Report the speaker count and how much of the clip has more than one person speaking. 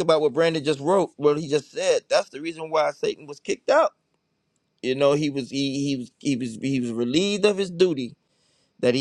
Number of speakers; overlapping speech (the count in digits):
1, no overlap